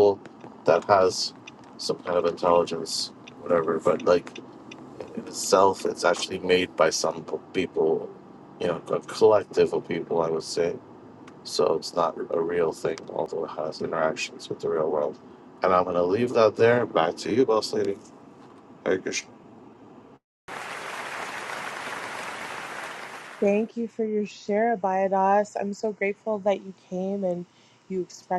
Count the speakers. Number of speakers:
2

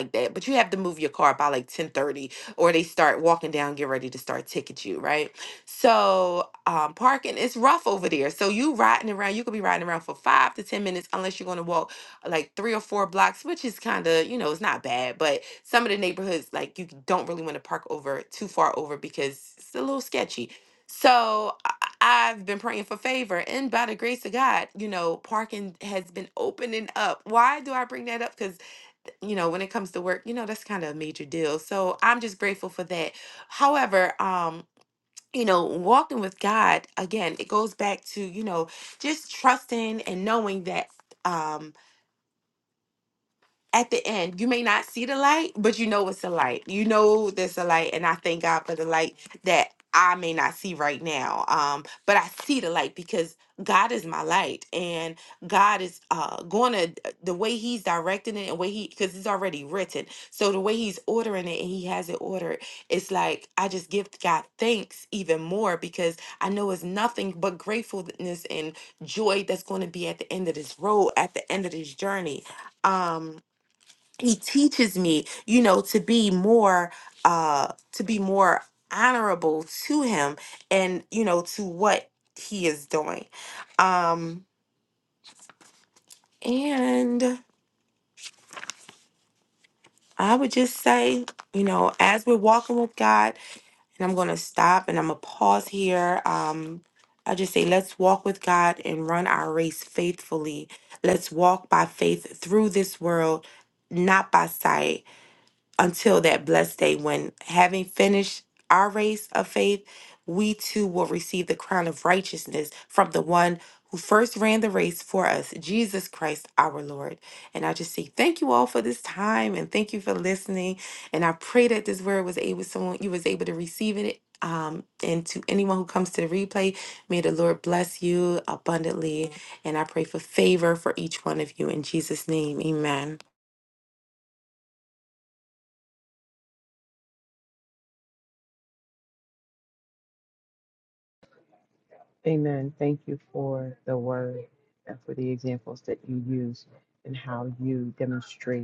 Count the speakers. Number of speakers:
2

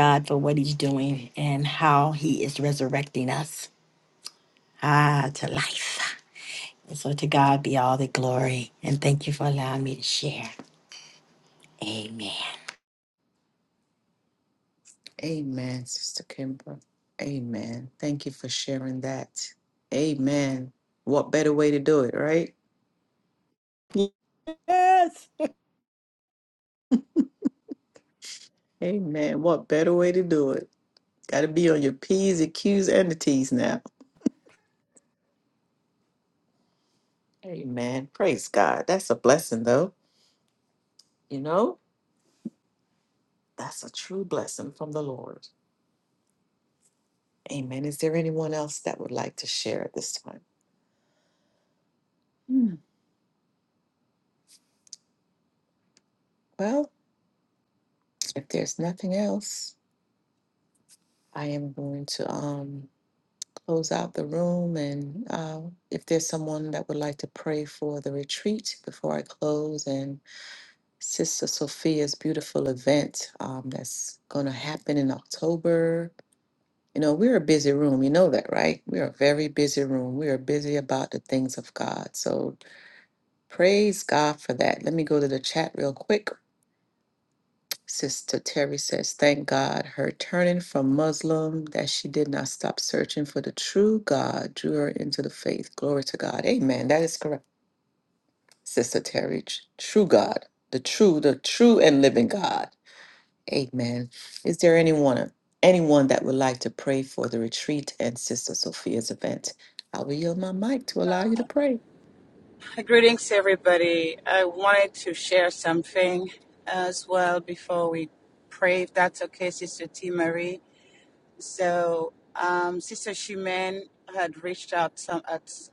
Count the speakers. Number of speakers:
3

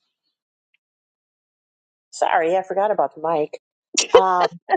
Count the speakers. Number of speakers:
1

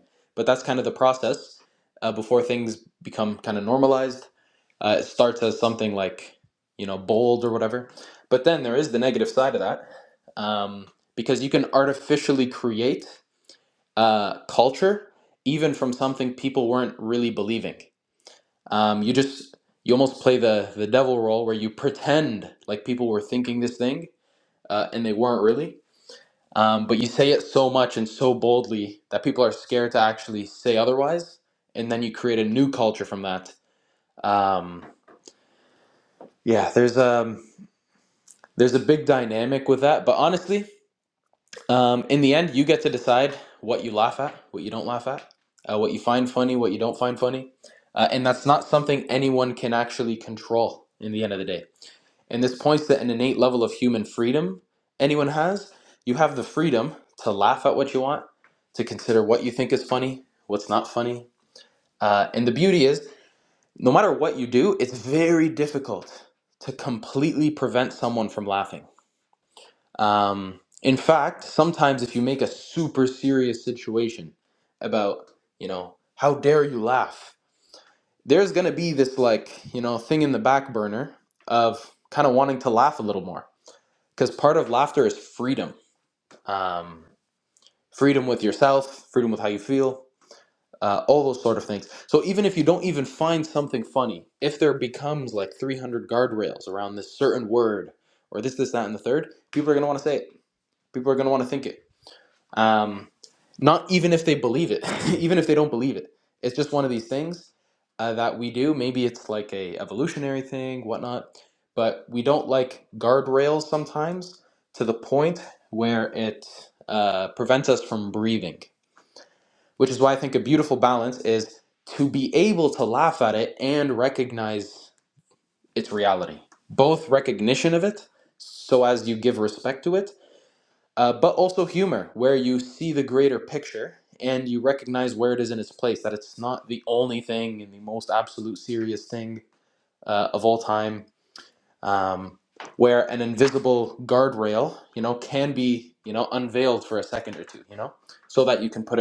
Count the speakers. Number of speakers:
1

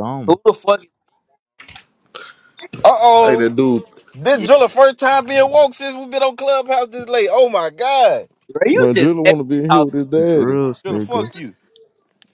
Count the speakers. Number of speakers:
4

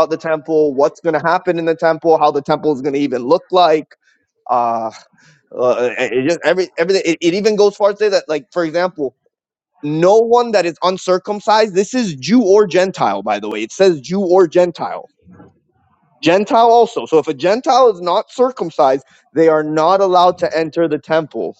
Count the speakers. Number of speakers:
1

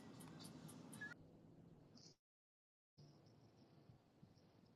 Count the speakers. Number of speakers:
0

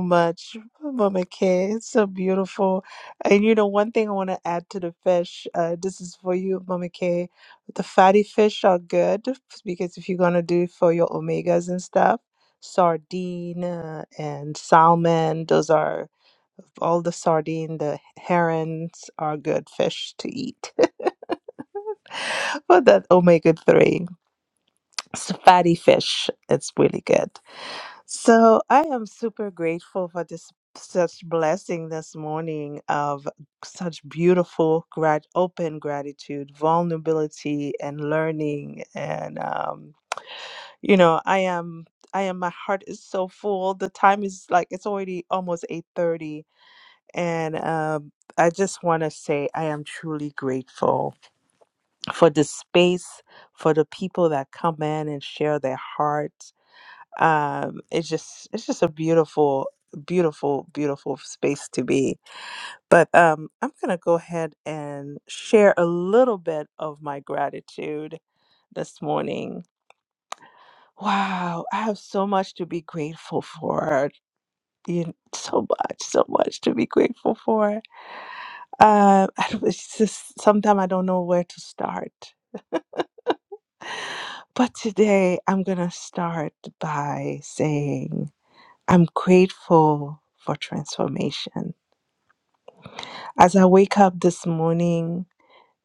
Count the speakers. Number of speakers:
1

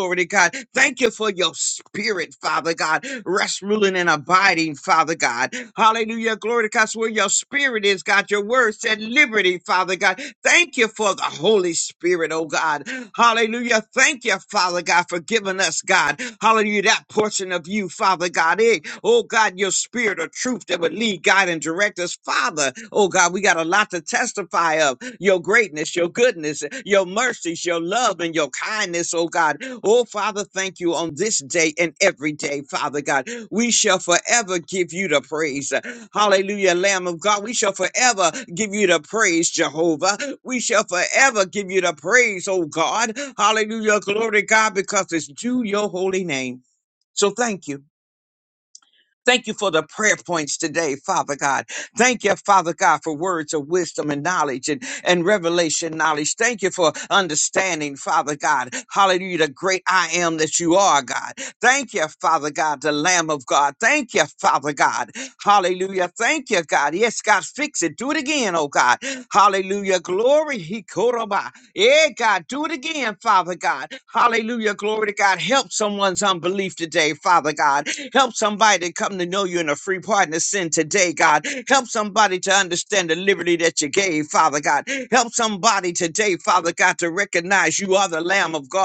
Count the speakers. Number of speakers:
1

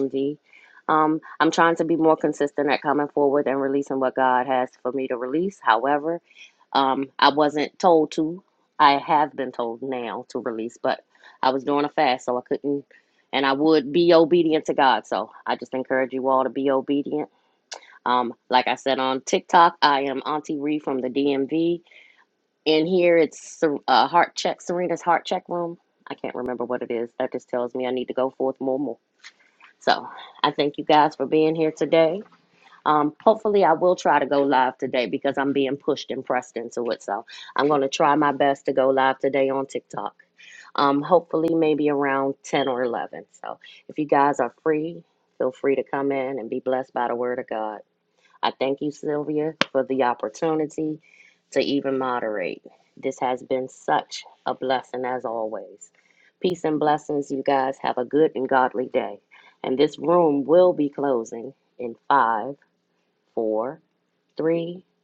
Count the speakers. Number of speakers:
1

